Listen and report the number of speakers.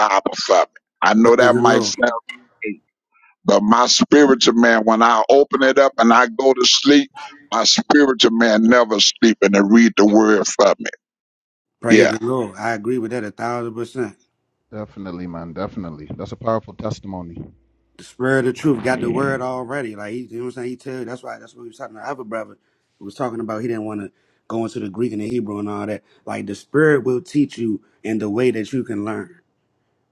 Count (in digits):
3